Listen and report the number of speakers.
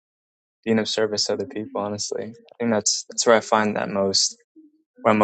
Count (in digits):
1